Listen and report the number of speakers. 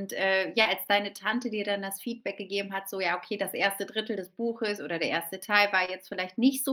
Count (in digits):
1